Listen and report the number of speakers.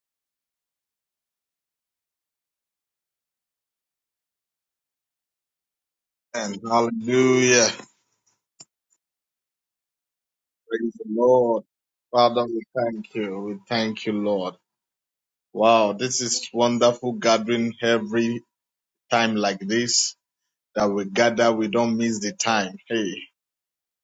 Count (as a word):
one